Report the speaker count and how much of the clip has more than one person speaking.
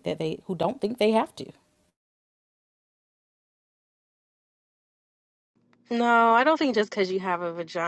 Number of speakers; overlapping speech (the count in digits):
2, no overlap